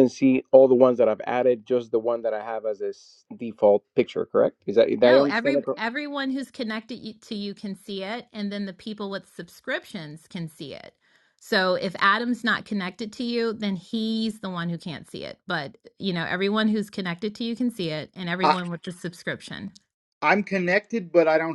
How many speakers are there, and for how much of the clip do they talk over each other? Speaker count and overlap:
3, about 4%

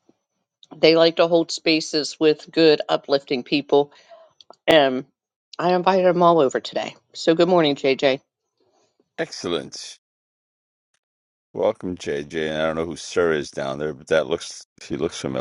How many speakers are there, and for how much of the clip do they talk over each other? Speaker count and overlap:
2, no overlap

